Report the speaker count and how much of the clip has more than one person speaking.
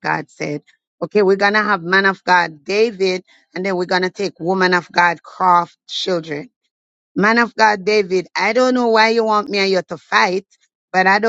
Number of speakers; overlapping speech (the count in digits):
1, no overlap